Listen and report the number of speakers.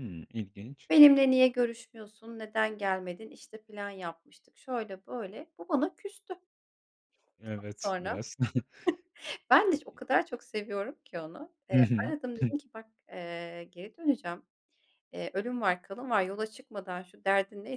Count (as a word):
two